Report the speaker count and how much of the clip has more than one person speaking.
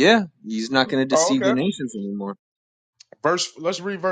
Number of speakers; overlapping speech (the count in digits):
2, about 11%